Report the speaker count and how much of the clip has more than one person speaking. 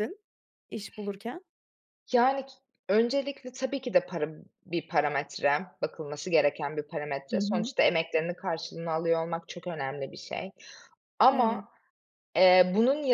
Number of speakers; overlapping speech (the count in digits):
2, about 5%